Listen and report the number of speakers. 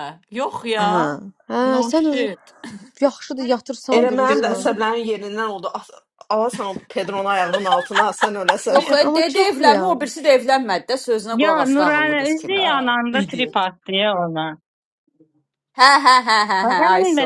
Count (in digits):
5